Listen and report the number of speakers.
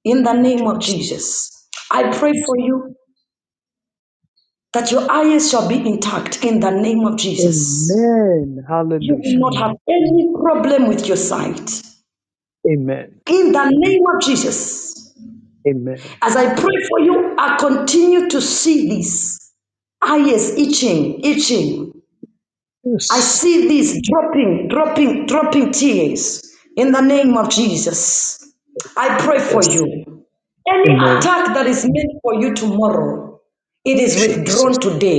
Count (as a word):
two